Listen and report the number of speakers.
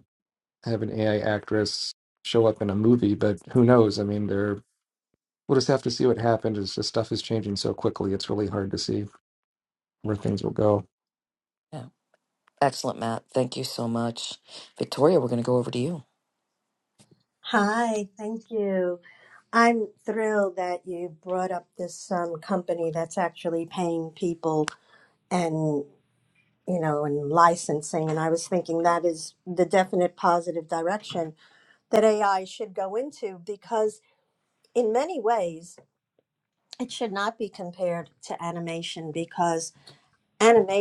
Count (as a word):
three